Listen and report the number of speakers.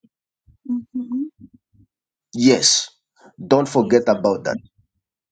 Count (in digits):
2